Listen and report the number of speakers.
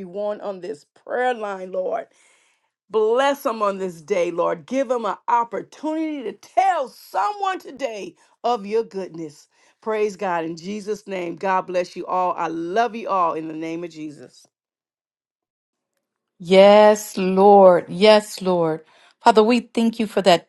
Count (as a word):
two